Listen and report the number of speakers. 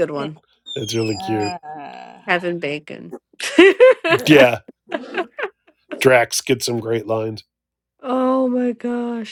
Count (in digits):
3